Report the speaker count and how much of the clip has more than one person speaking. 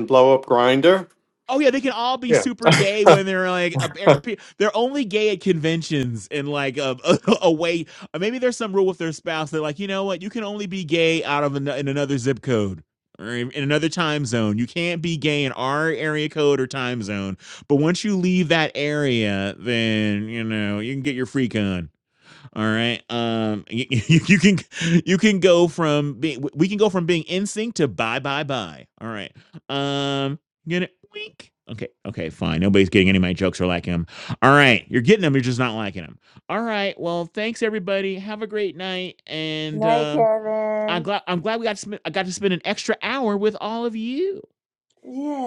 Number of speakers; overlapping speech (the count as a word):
three, about 2%